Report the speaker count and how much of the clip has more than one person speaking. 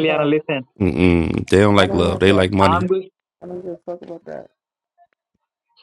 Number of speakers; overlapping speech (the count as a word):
three, about 22%